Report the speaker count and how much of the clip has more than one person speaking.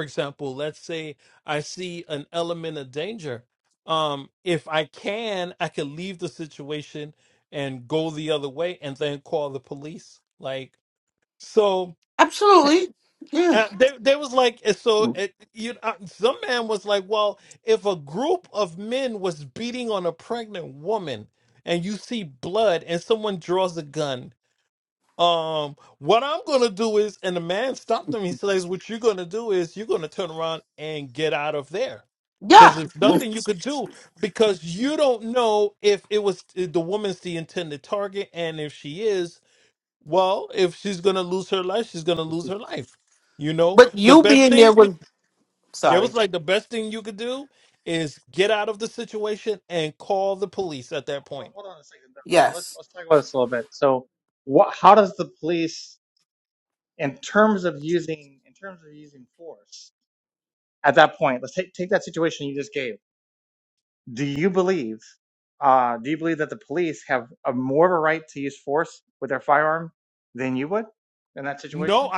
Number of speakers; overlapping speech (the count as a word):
three, about 3%